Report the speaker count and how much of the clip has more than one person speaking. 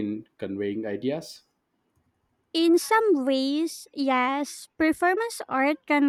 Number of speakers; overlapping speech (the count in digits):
2, no overlap